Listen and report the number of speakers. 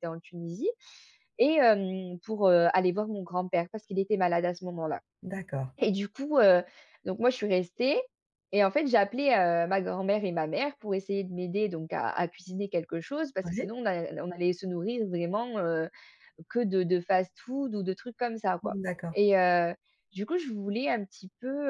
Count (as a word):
two